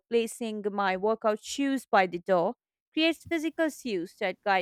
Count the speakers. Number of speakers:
1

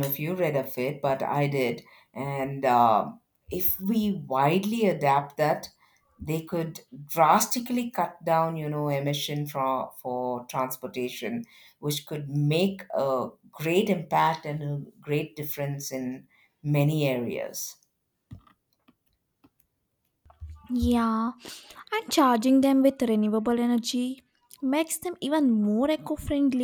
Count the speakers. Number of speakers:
2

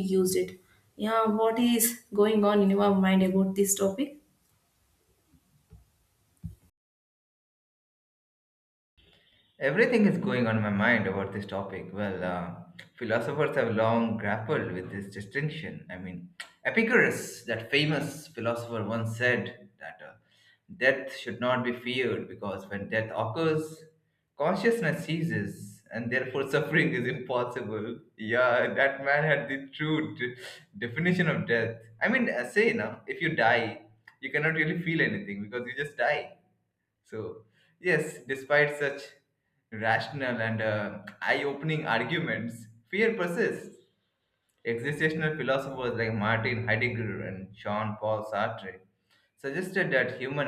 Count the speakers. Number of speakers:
2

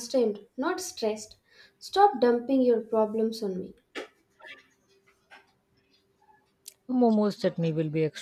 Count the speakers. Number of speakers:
2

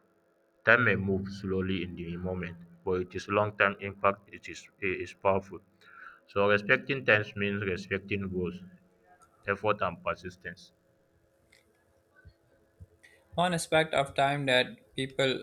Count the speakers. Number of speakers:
2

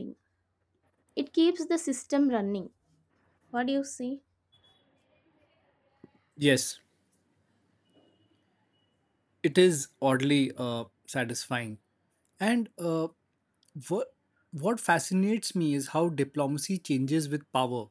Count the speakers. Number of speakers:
2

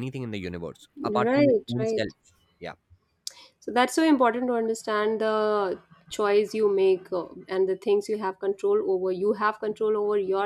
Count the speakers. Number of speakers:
2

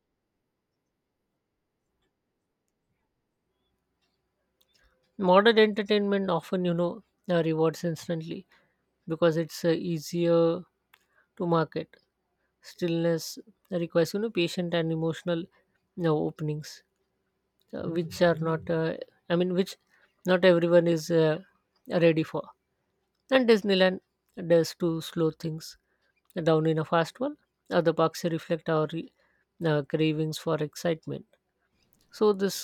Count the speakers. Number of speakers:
1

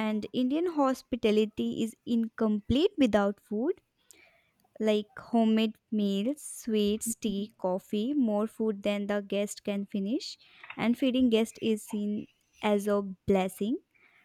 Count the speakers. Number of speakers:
1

